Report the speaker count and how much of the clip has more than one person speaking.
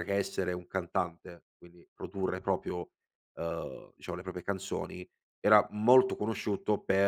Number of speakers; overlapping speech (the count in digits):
1, no overlap